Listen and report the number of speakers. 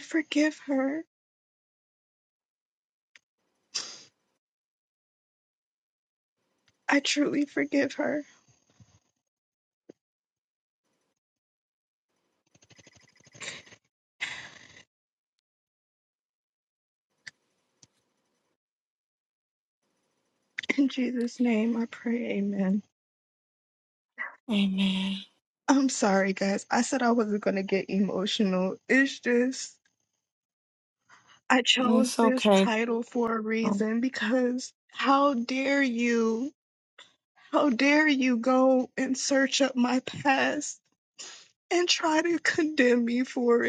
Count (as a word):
two